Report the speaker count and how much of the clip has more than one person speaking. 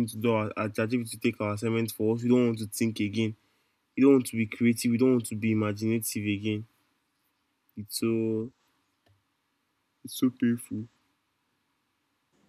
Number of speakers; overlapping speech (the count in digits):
1, no overlap